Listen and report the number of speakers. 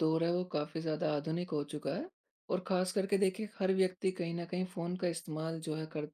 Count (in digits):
1